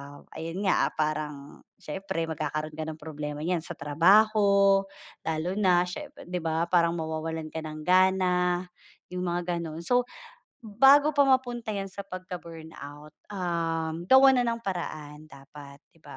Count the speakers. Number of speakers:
1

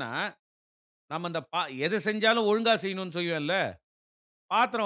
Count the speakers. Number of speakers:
1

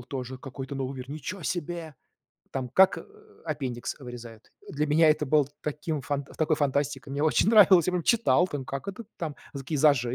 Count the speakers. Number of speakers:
1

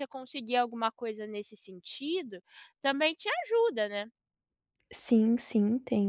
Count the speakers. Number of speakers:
2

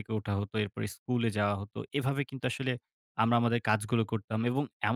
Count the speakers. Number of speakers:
1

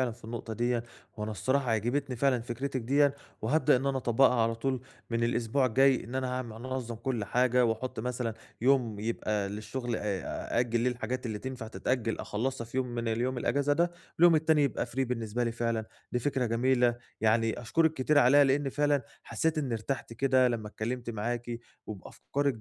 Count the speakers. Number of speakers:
1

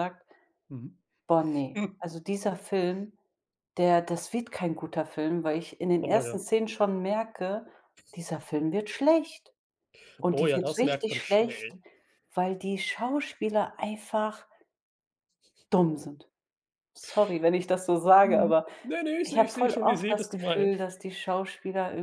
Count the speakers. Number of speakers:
2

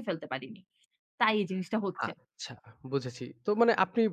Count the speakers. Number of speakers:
2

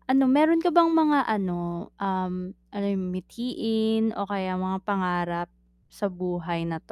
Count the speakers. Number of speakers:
1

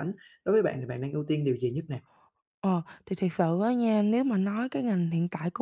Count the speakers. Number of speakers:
2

